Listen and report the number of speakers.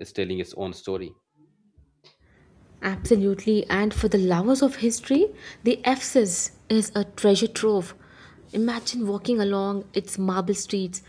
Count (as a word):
two